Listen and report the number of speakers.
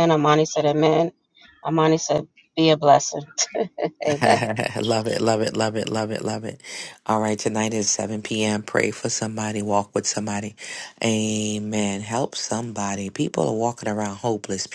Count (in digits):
2